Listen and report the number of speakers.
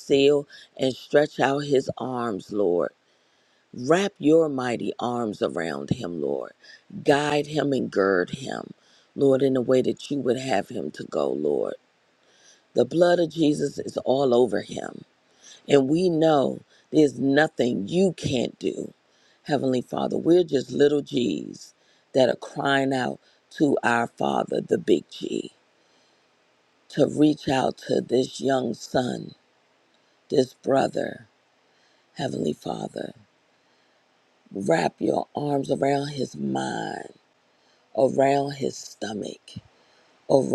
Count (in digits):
1